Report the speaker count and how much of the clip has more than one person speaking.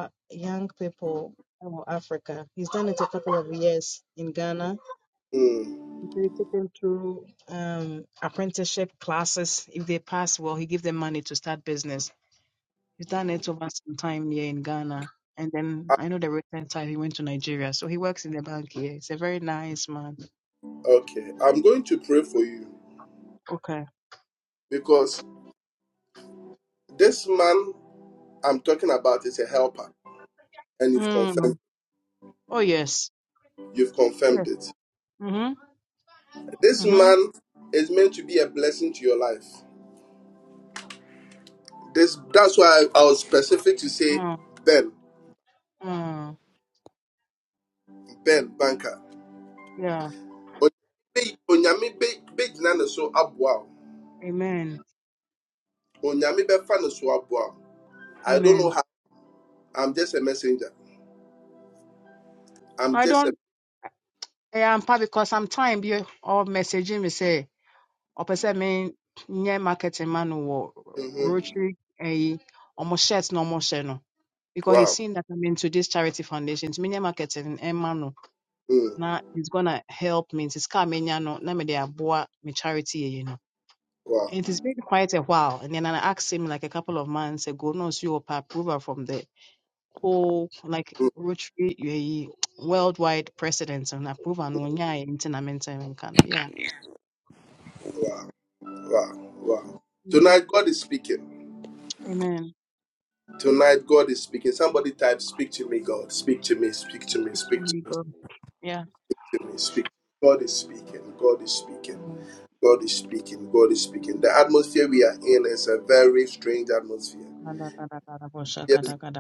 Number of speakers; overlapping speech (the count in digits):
2, about 3%